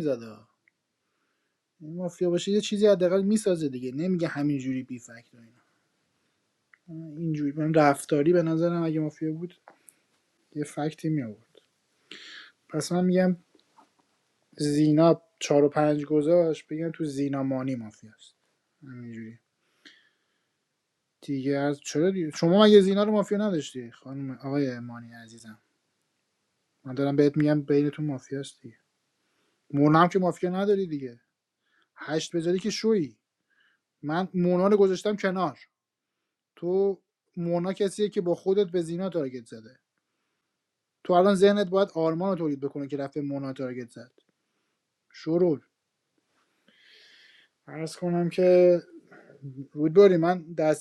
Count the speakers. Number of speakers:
one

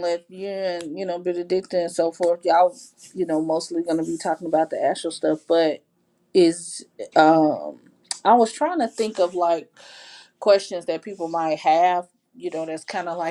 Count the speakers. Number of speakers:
one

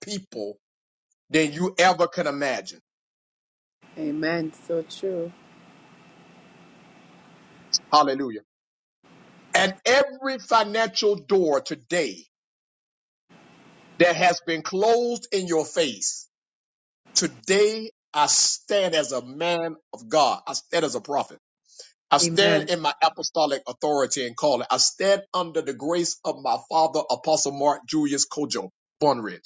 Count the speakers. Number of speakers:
two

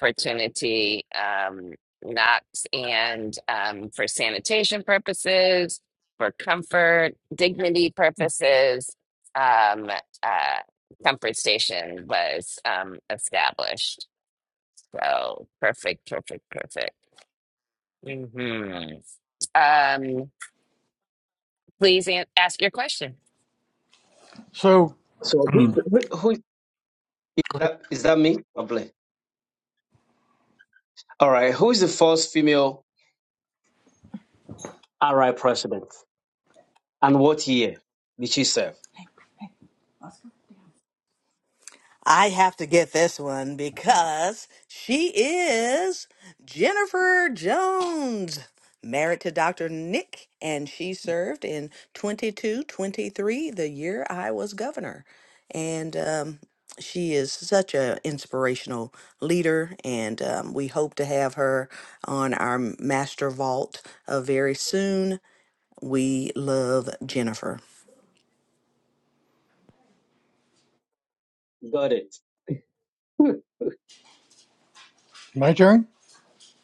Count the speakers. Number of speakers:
four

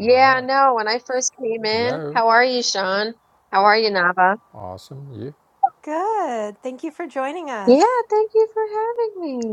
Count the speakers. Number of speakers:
three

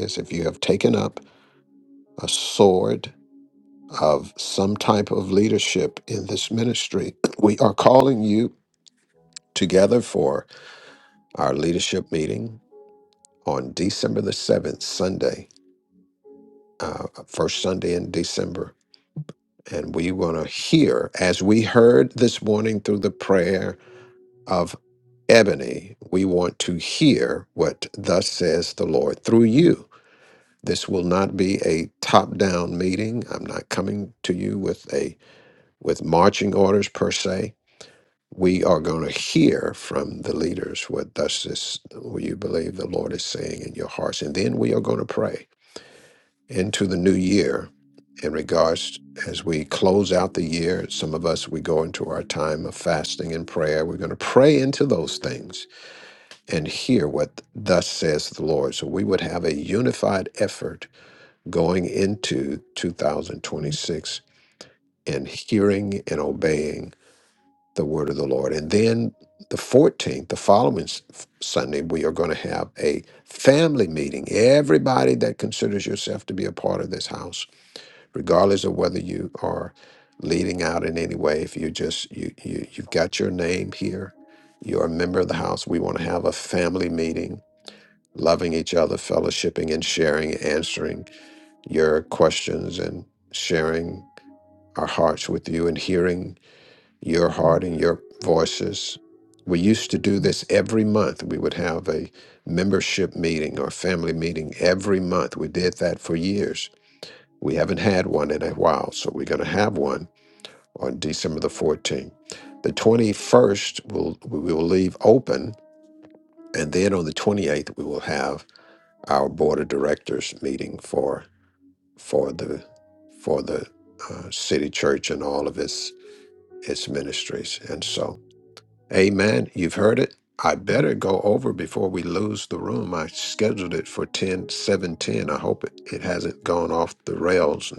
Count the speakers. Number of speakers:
one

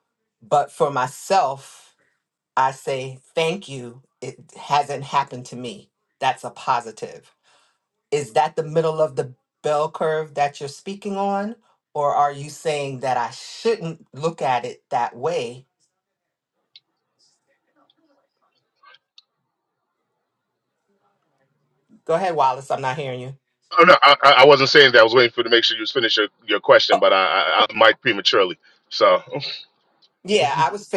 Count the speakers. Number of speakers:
two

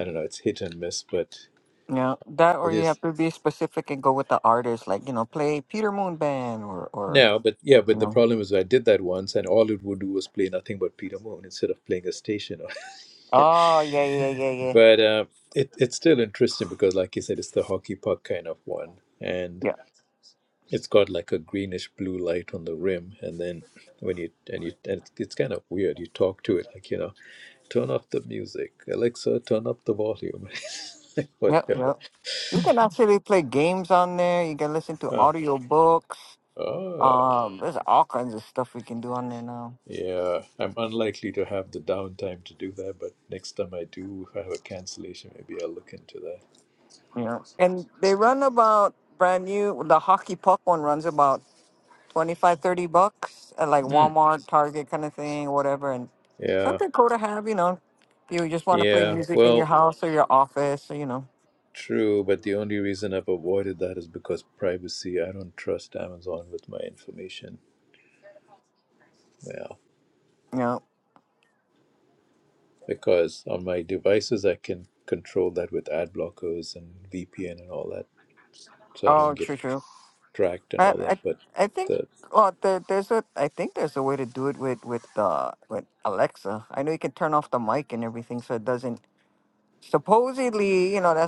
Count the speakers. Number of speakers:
two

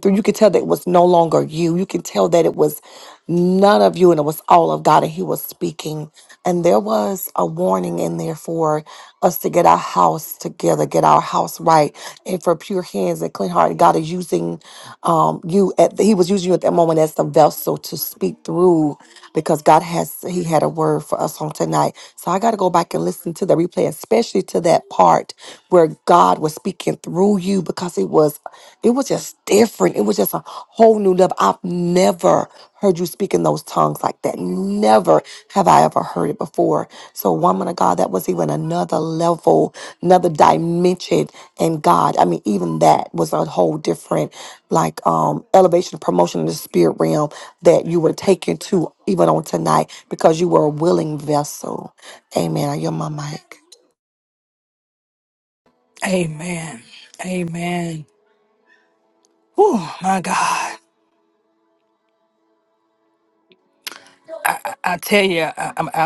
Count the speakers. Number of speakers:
two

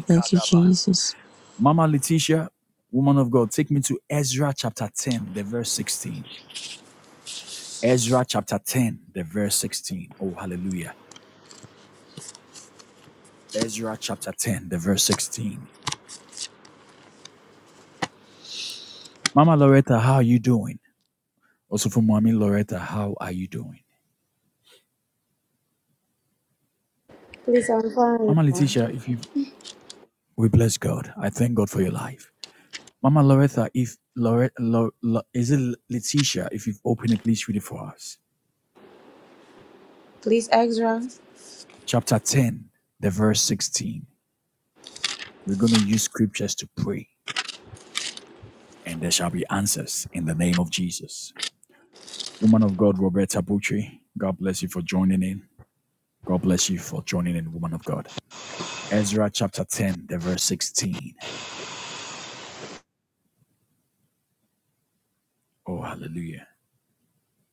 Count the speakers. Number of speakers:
three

